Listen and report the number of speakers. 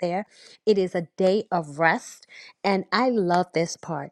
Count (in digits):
1